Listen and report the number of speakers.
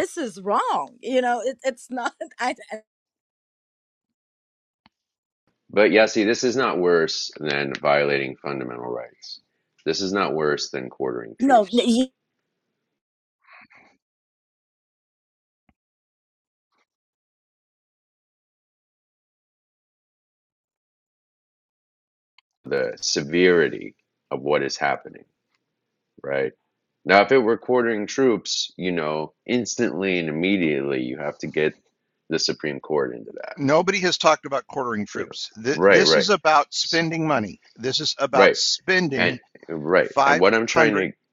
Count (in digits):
3